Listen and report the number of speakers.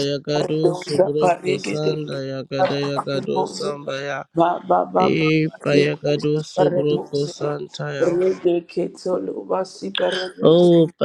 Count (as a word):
two